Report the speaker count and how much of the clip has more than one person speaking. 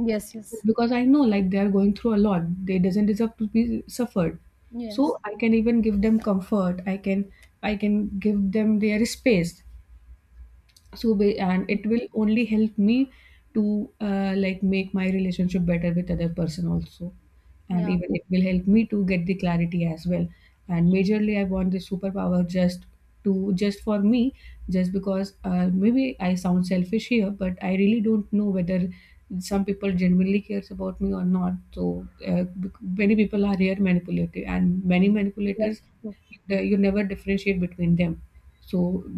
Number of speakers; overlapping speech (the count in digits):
2, about 1%